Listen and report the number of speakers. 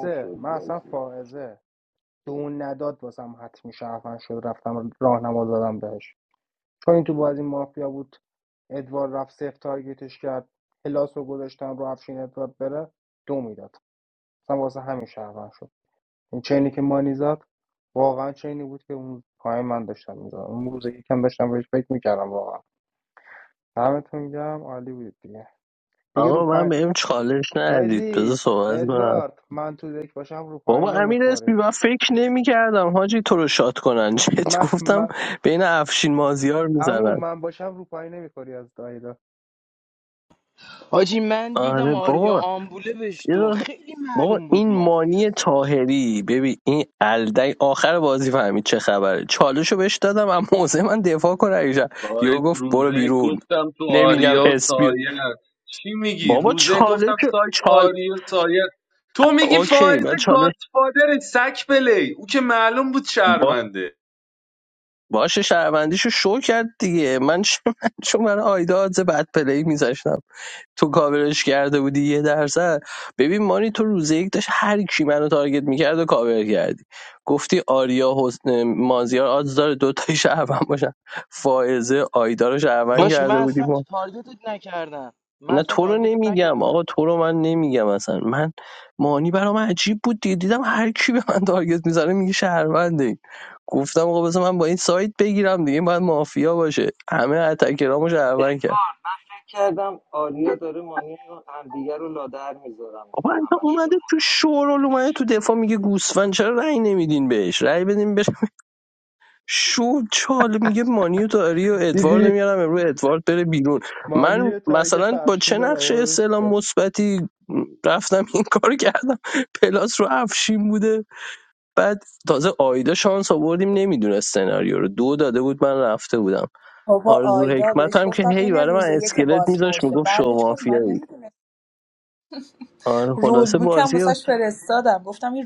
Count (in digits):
6